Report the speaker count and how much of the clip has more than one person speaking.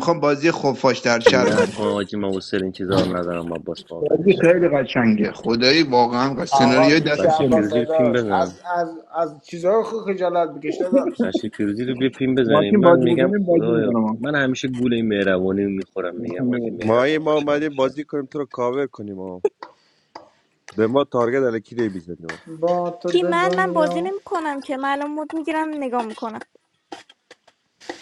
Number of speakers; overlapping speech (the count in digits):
5, about 28%